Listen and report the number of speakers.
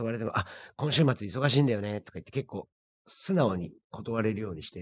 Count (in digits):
1